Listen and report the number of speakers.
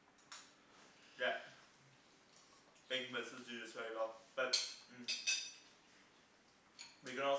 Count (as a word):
one